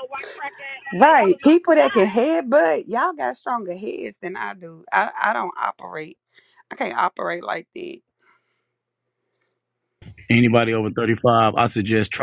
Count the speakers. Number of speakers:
3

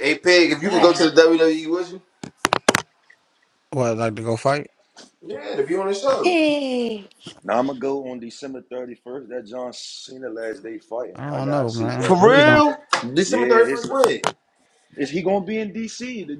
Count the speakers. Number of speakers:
4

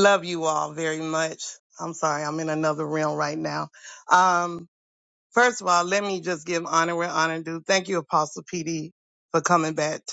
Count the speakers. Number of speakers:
1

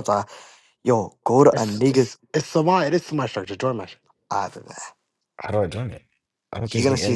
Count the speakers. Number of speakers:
3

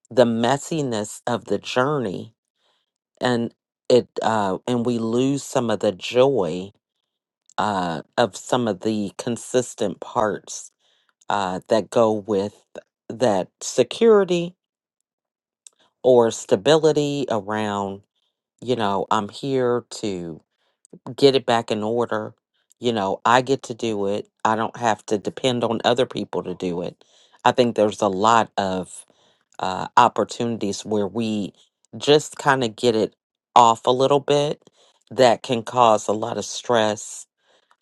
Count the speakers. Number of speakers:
1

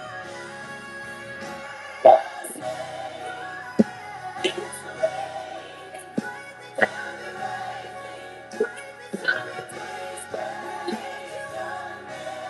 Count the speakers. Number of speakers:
0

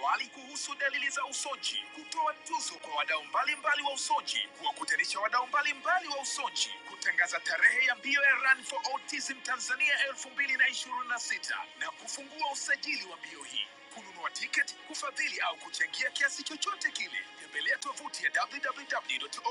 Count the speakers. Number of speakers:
1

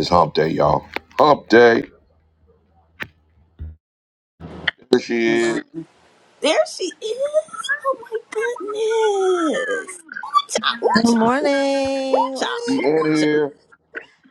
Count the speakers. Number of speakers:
3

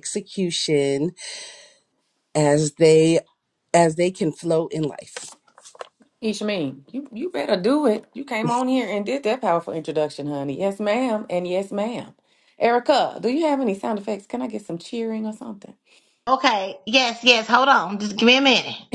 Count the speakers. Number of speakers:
3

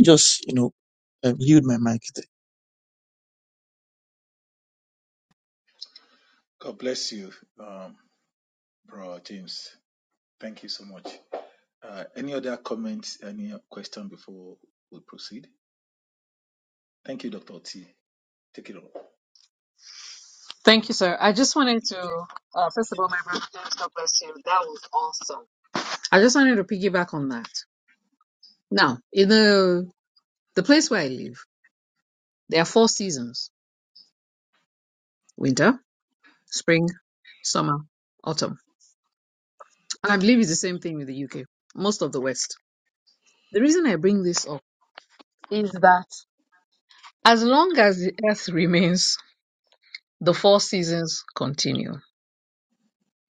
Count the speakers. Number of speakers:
3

